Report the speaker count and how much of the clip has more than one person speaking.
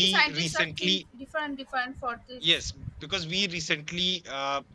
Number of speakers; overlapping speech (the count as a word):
two, about 22%